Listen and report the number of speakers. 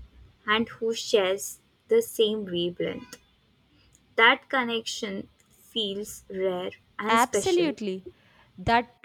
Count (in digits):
2